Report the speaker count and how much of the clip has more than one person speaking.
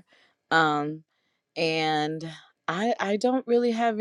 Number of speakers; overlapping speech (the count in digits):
1, no overlap